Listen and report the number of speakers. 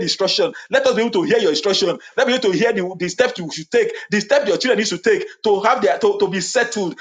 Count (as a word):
one